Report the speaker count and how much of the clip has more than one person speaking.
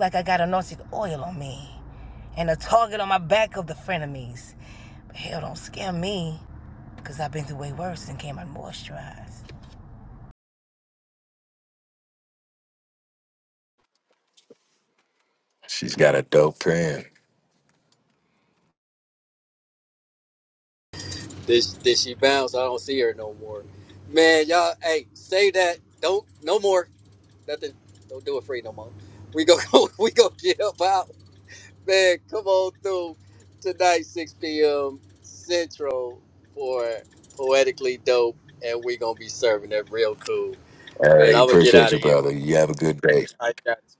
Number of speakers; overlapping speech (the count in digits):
3, about 2%